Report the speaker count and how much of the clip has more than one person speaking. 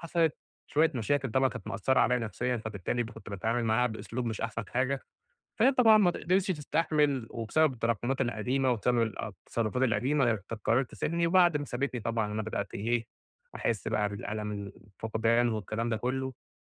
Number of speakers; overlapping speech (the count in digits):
1, no overlap